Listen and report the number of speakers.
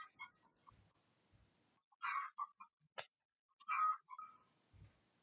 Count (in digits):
0